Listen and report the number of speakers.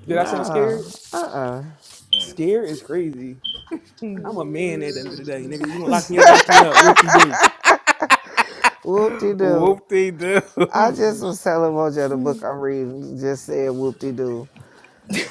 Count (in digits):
3